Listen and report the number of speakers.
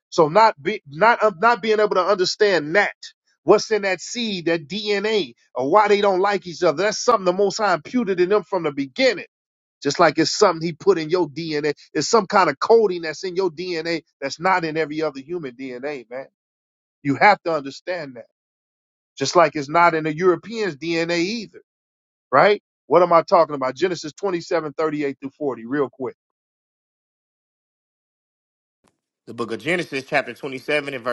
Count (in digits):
2